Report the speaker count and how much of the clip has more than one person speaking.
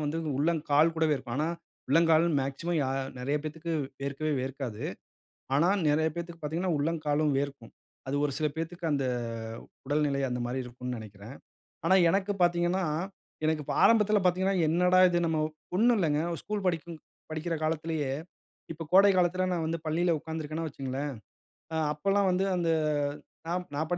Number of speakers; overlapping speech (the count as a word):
one, no overlap